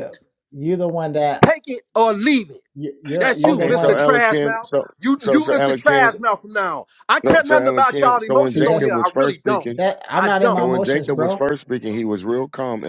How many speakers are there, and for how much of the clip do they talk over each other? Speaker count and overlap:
3, about 51%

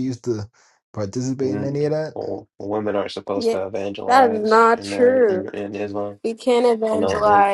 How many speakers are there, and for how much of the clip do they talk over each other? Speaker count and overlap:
3, about 39%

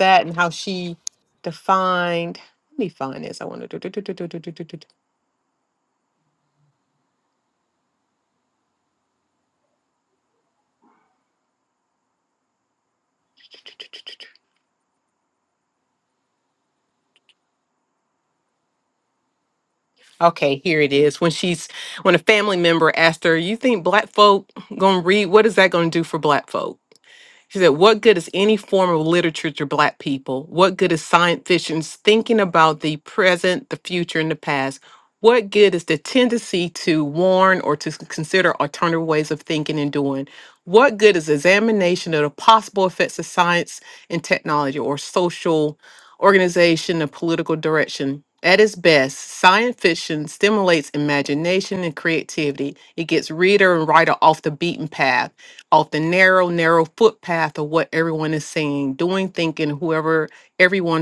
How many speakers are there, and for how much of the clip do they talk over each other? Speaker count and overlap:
1, no overlap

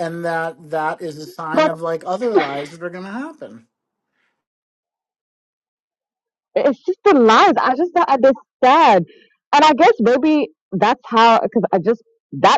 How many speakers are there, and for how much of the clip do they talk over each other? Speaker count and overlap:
2, no overlap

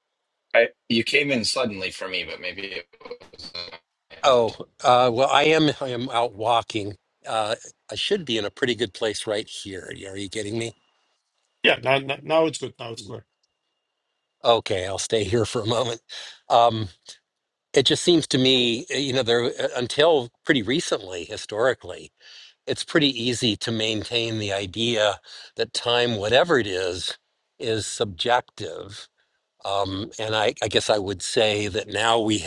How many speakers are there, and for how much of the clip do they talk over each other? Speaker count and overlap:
3, no overlap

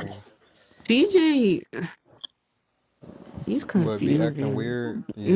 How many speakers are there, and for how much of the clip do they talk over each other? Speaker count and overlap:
2, about 22%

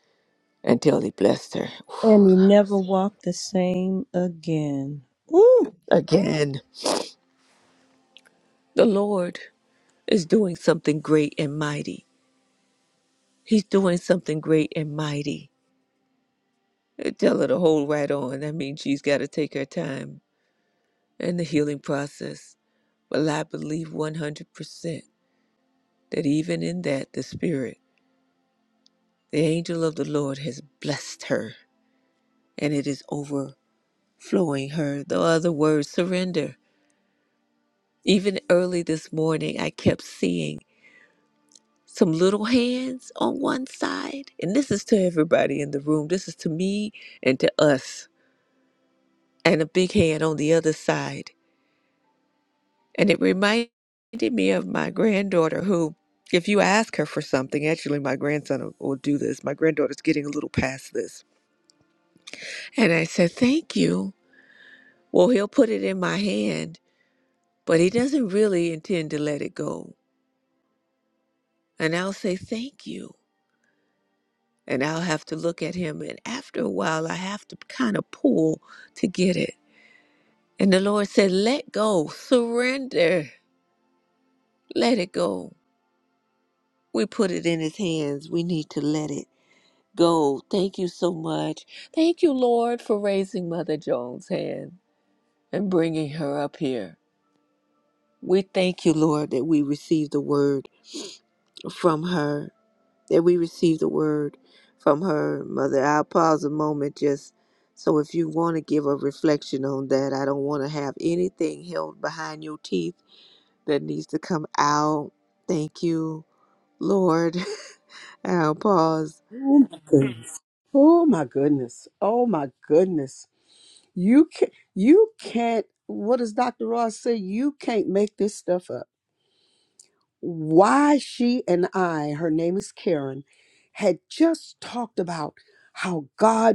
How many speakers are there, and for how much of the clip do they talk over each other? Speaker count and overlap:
3, no overlap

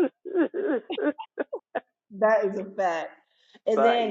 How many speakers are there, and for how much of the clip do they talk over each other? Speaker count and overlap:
2, about 9%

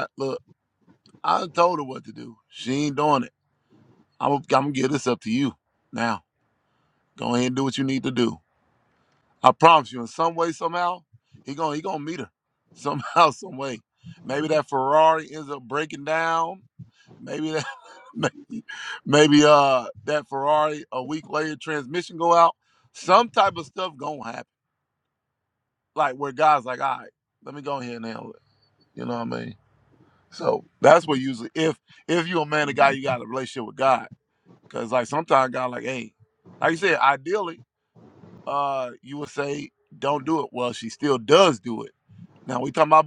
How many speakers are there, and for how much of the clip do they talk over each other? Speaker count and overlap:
1, no overlap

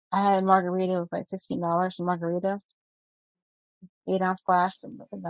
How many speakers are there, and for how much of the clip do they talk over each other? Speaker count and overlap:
1, no overlap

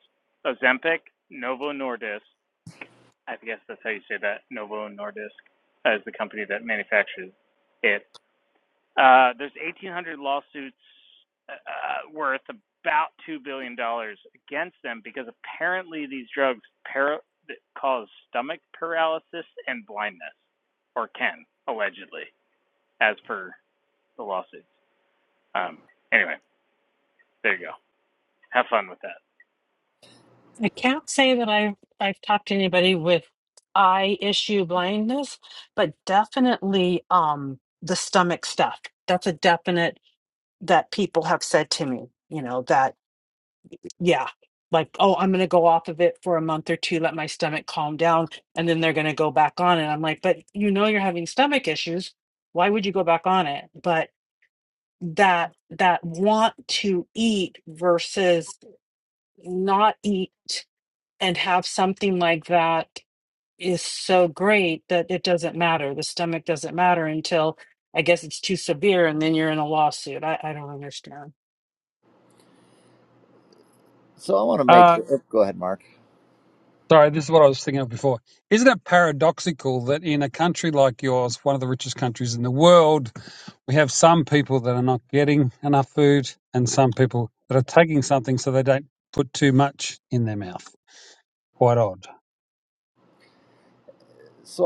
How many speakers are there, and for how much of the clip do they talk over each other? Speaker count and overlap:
4, under 1%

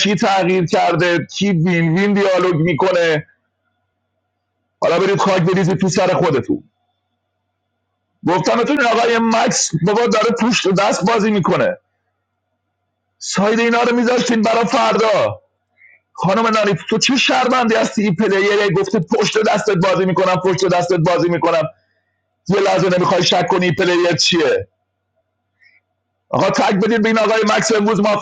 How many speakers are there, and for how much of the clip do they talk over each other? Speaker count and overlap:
1, no overlap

